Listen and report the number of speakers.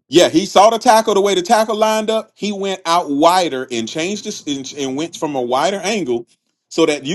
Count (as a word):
one